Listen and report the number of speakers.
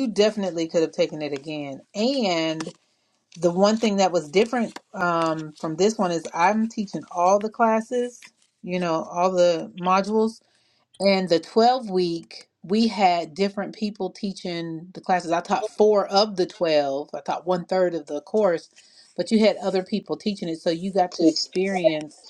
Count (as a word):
one